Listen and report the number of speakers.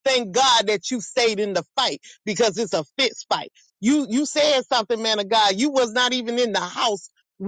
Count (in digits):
1